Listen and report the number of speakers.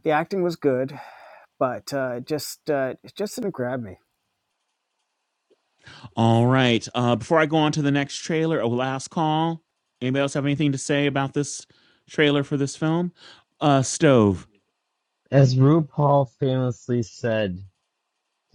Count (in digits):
3